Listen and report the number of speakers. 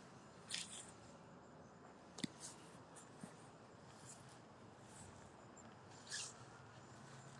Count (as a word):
zero